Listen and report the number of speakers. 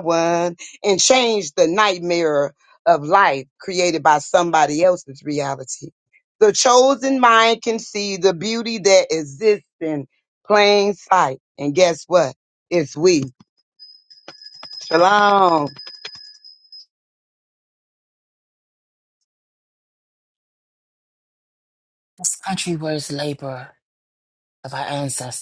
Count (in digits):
2